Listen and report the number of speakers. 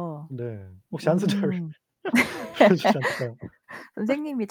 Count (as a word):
two